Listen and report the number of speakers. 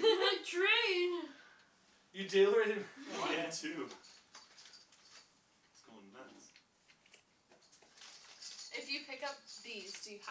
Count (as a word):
four